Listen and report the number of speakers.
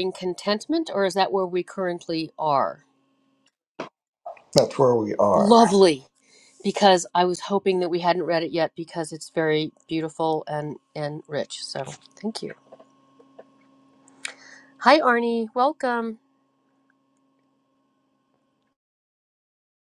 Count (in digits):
2